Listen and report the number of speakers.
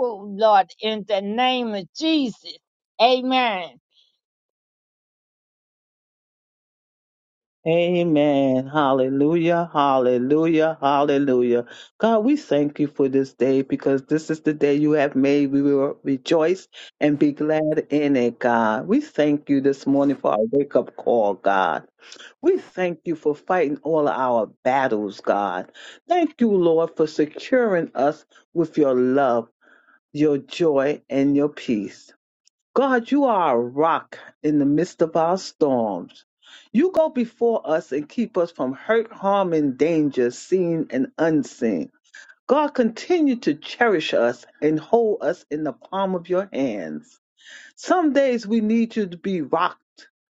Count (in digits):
2